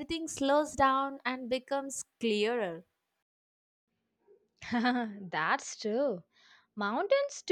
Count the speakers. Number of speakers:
2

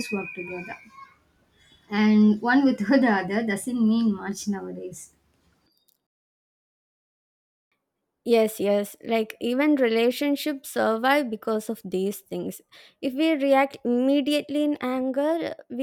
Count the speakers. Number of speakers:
2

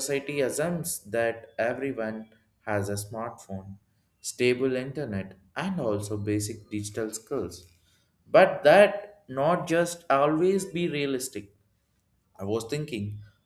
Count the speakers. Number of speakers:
1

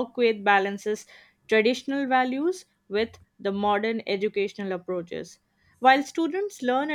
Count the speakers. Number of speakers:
1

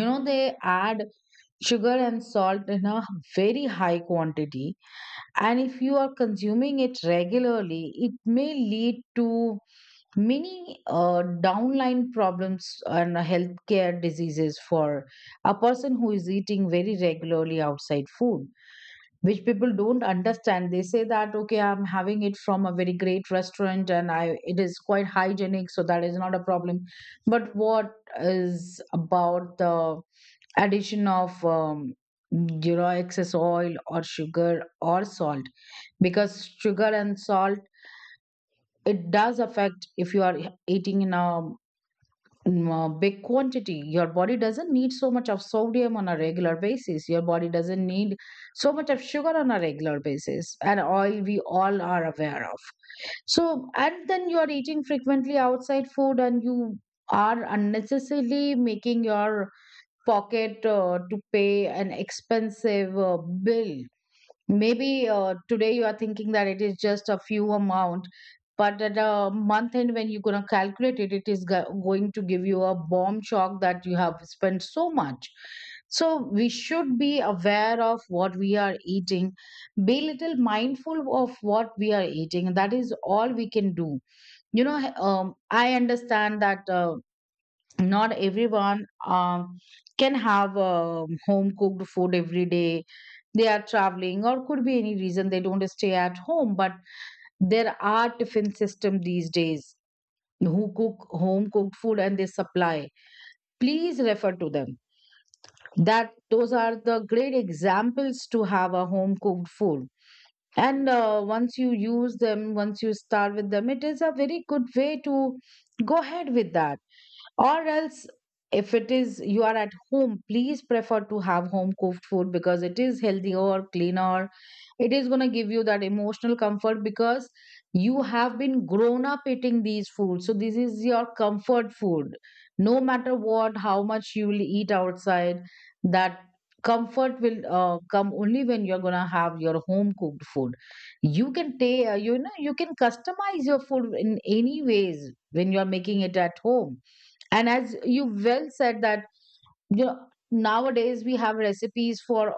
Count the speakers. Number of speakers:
1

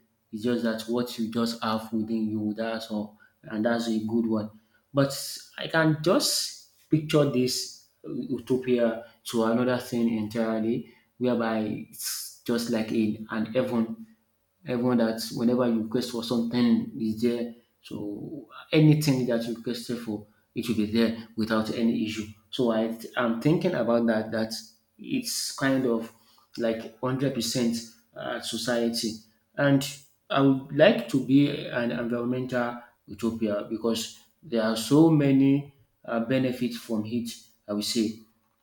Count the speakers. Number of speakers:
1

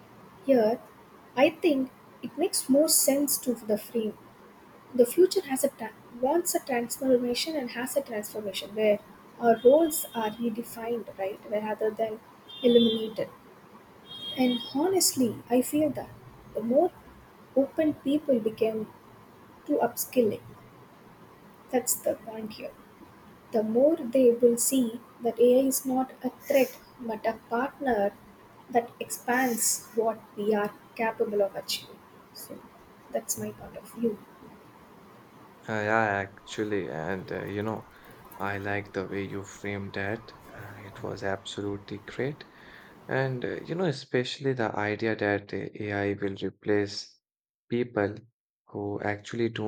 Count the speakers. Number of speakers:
2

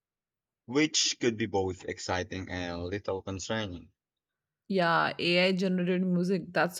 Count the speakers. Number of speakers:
2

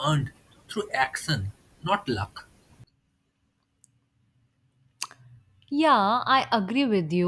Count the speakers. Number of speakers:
2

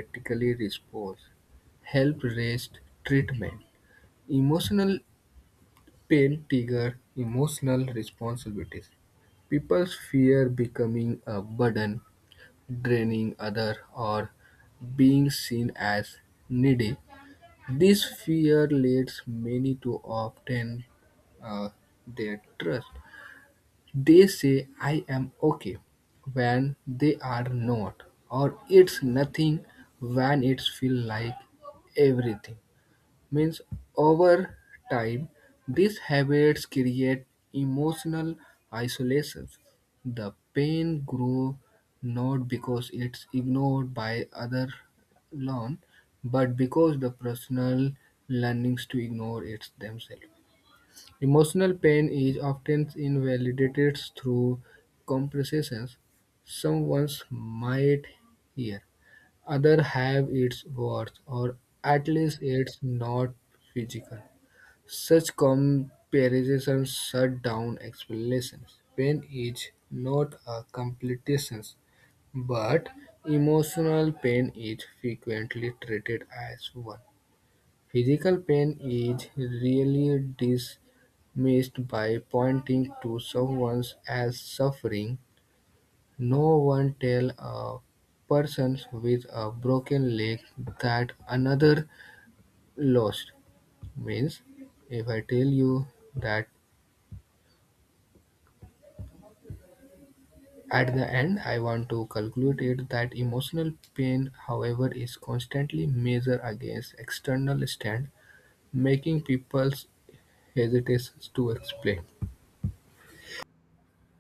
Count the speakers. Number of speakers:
1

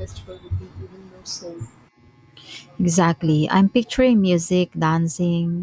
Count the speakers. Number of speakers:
2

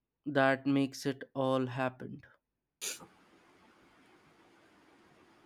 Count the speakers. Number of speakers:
1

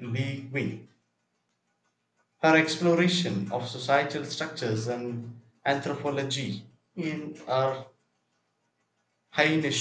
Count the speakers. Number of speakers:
1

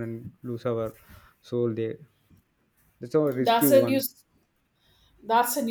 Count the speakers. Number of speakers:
2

